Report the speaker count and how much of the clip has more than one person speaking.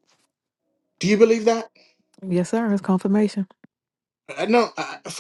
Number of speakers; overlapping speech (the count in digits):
2, no overlap